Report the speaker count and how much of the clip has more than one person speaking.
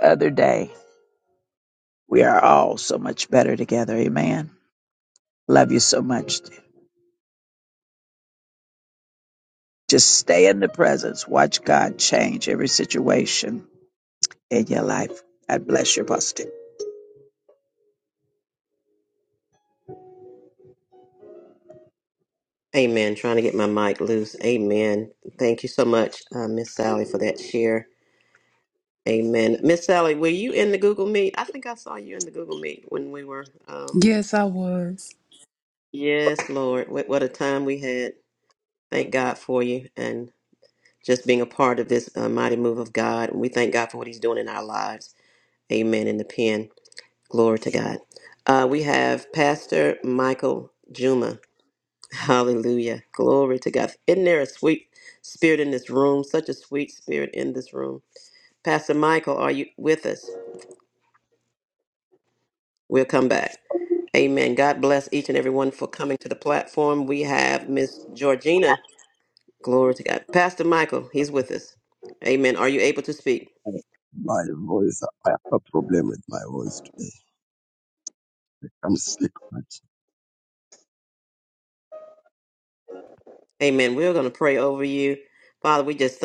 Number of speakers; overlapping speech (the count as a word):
four, under 1%